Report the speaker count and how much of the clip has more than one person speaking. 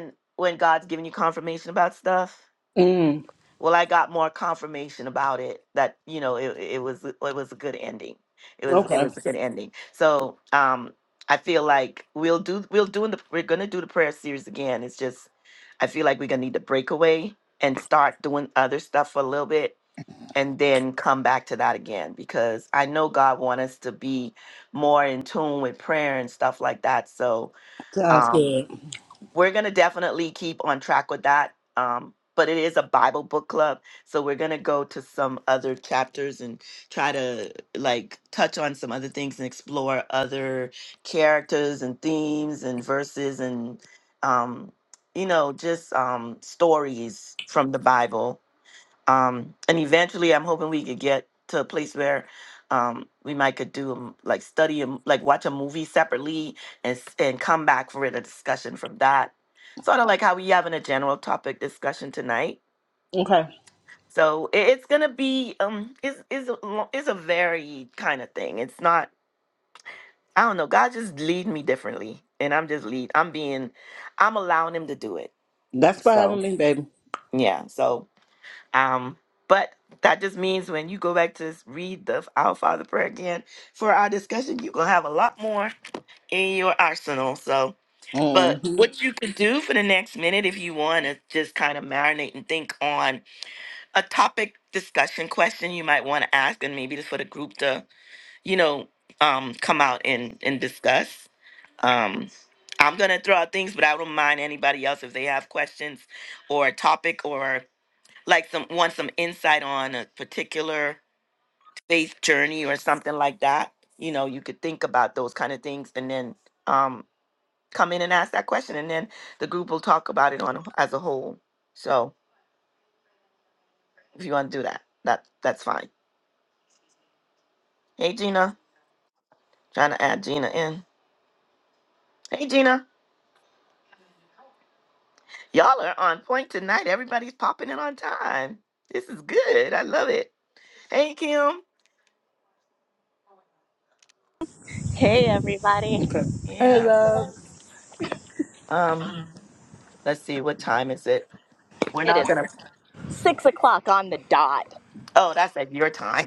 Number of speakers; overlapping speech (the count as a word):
three, about 2%